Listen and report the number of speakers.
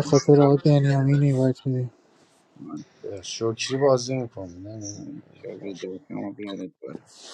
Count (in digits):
3